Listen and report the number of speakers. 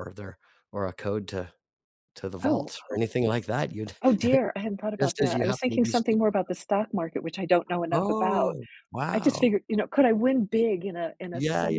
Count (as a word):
two